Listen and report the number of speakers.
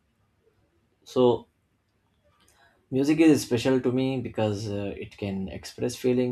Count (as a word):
one